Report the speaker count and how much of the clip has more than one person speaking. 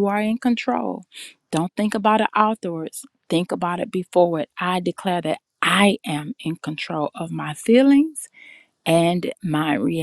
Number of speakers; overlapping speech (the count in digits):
1, no overlap